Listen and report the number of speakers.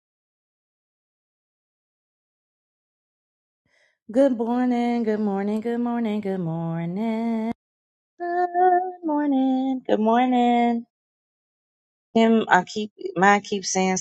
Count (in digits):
1